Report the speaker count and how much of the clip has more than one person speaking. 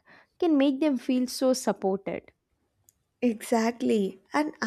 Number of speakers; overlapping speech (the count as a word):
two, no overlap